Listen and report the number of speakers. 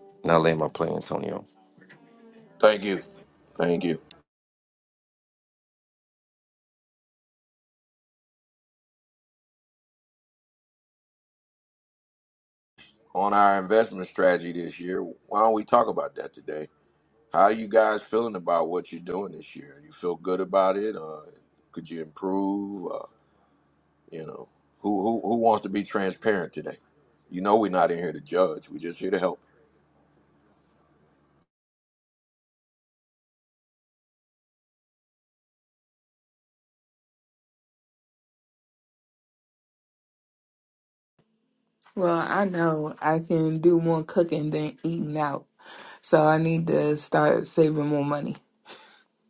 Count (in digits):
3